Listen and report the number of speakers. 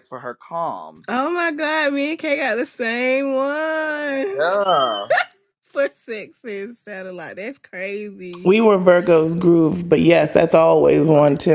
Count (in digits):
3